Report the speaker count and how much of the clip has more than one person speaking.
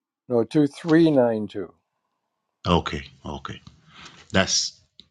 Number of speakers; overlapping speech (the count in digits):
2, no overlap